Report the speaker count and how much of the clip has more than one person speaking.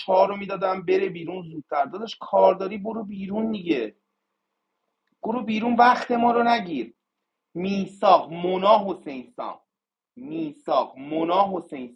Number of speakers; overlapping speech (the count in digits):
1, no overlap